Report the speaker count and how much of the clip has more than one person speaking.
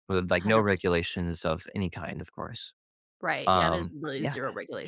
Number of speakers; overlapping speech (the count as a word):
two, about 27%